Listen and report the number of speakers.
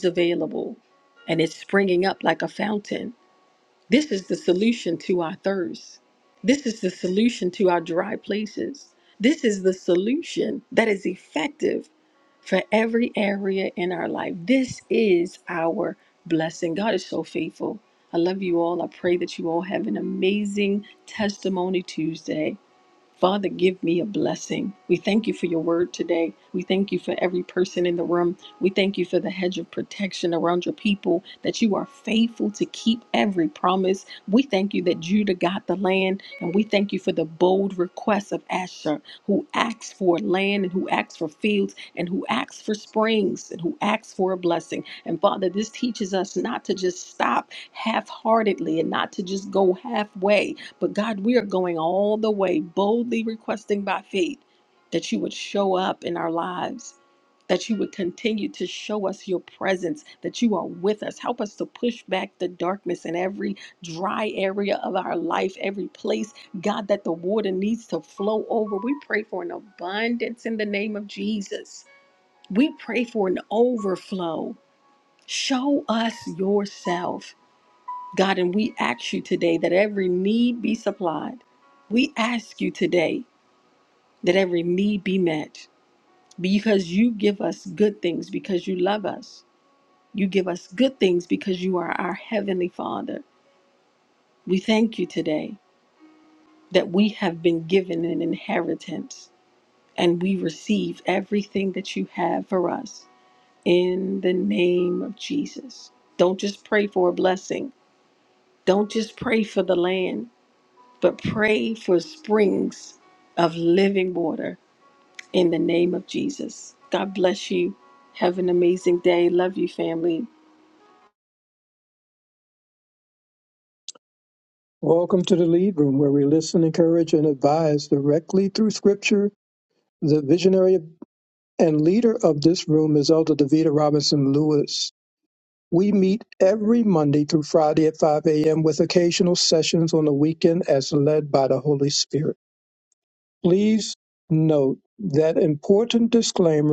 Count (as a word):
two